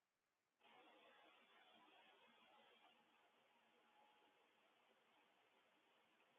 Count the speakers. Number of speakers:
zero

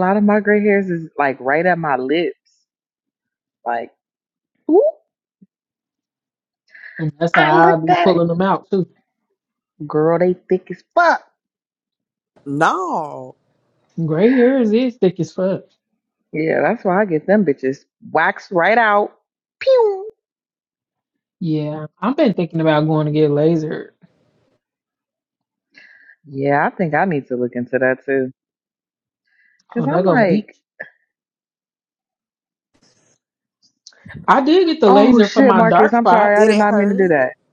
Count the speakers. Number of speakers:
three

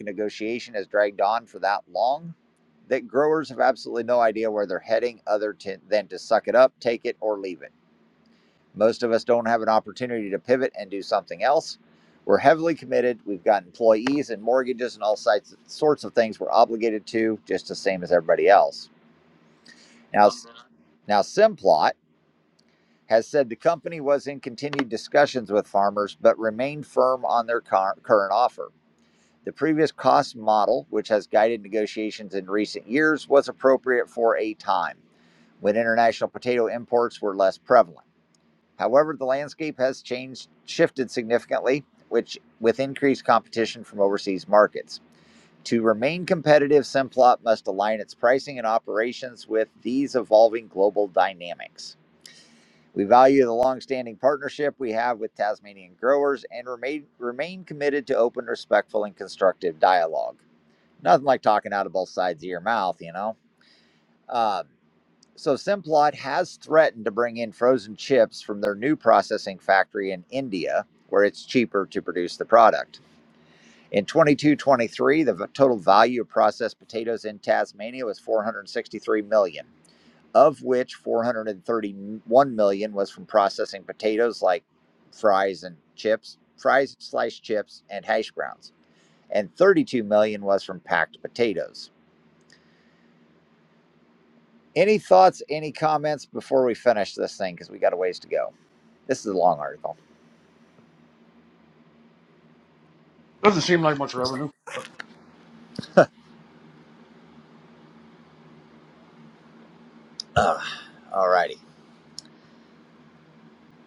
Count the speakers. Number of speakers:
two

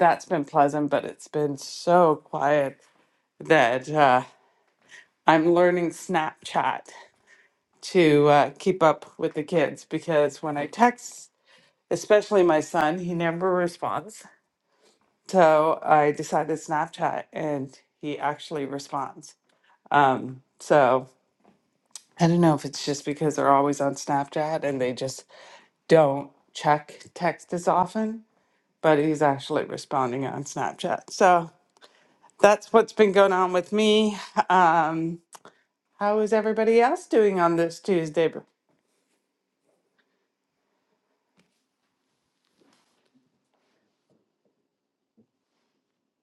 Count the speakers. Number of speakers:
one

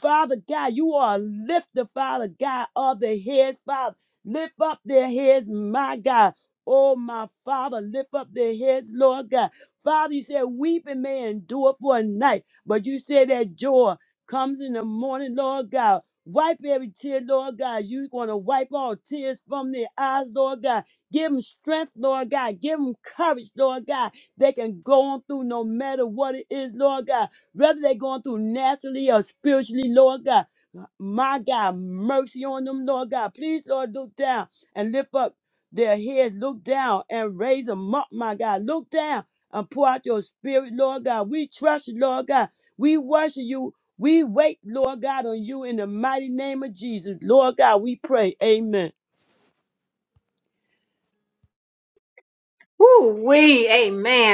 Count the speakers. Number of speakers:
two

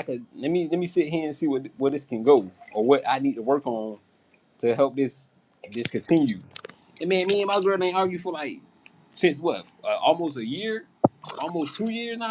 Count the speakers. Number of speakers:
one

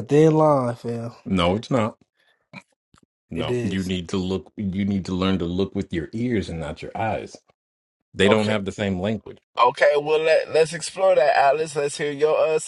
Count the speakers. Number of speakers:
three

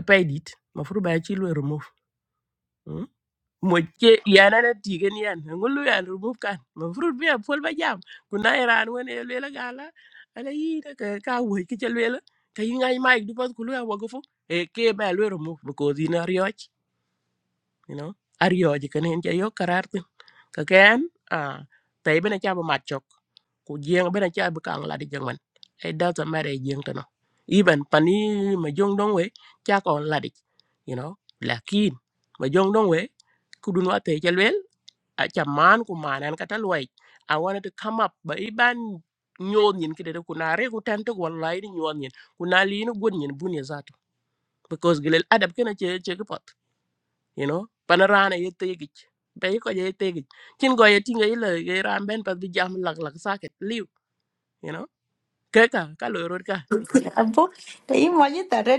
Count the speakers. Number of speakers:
two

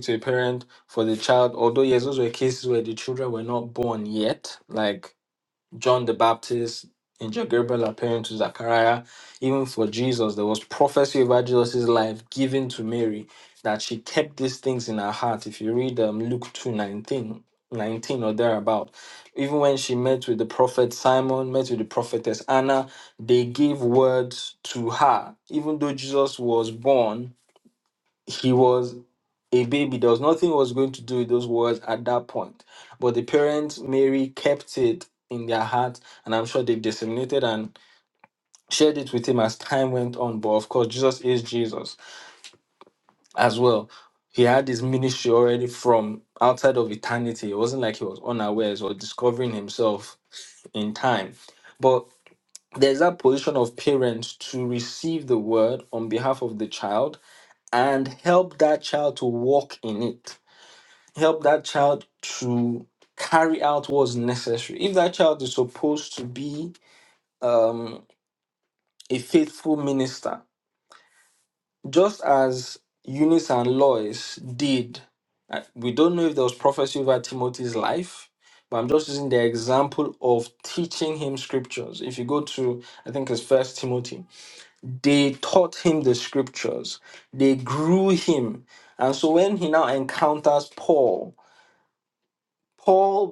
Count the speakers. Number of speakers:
one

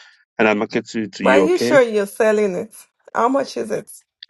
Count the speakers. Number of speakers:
two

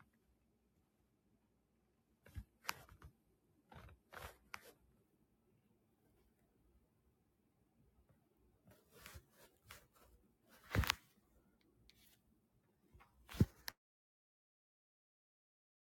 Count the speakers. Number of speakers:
zero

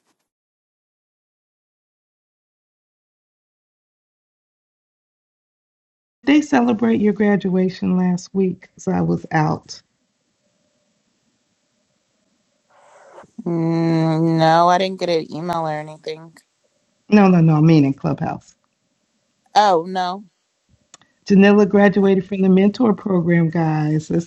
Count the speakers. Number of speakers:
two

